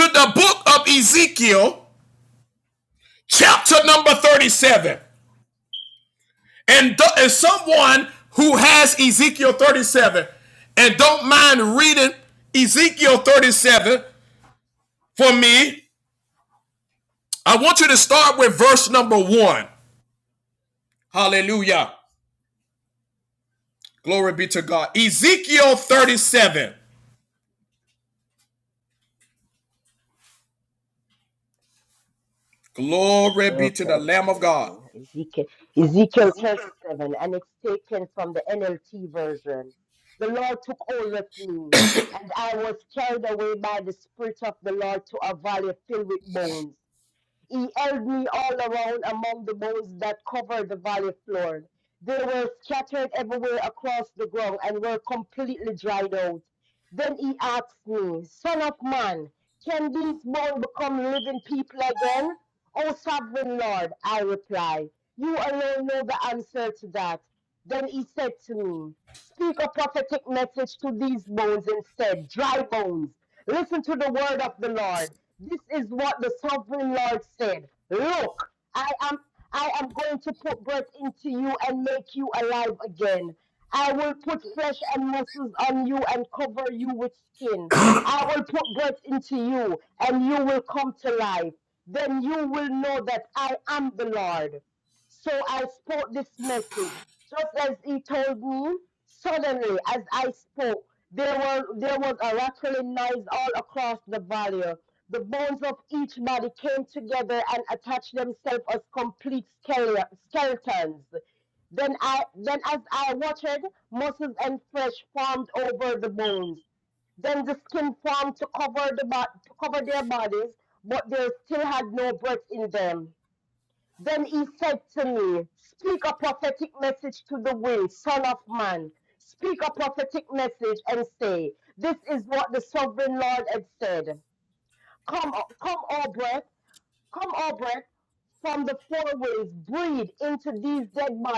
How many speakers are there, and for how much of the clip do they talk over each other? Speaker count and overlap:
two, about 1%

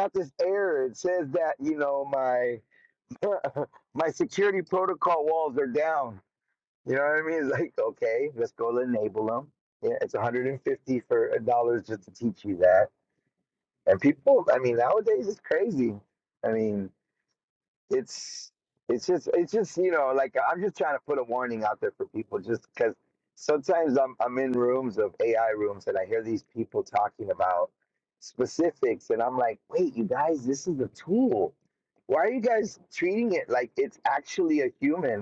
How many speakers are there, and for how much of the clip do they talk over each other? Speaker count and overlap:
one, no overlap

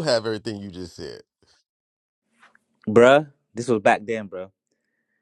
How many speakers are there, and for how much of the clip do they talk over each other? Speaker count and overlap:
two, no overlap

